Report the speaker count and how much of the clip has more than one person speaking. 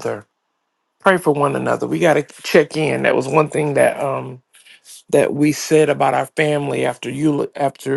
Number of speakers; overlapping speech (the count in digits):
1, no overlap